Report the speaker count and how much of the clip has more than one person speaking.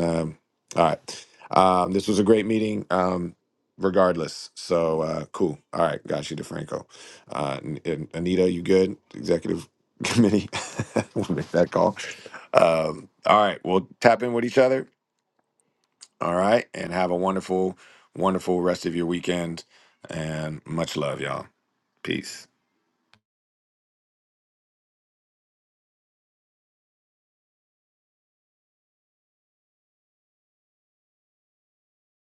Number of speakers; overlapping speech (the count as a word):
one, no overlap